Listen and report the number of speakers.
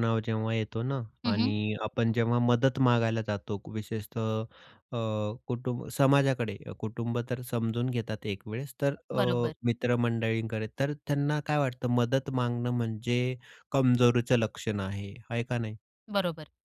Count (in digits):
2